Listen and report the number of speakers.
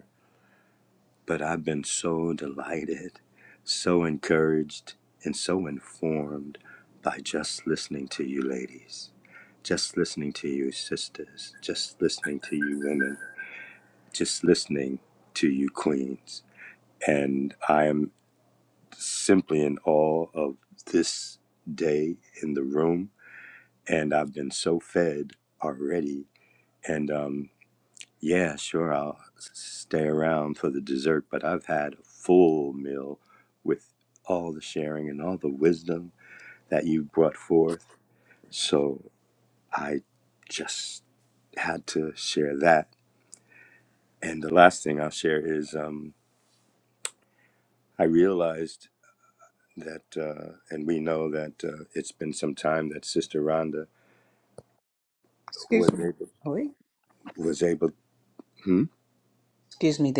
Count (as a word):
two